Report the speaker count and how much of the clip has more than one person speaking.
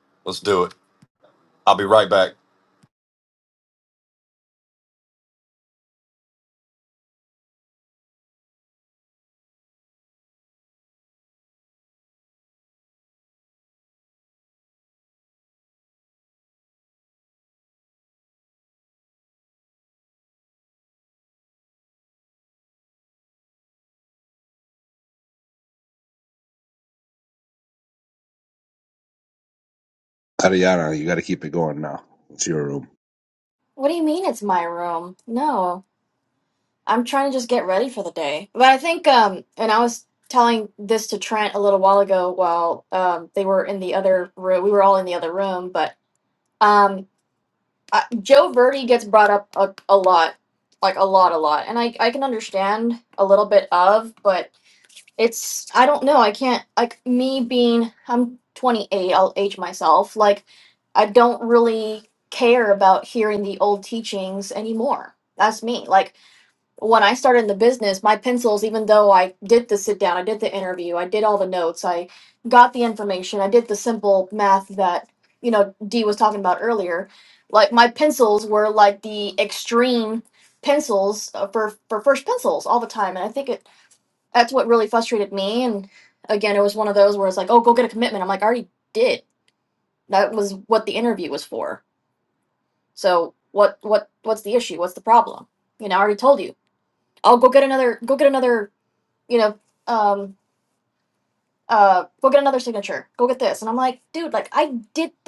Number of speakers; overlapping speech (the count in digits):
3, no overlap